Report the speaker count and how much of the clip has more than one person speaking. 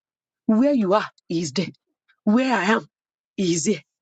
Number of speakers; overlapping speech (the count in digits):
1, no overlap